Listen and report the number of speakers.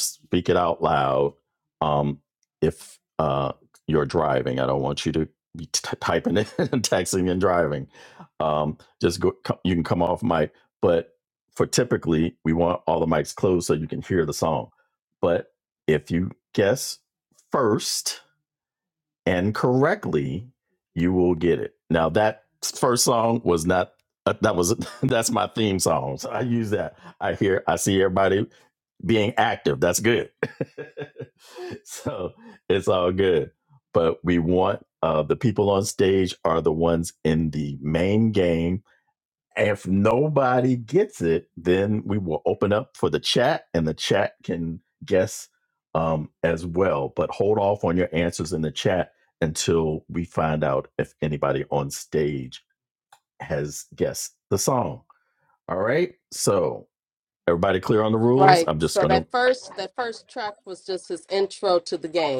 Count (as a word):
two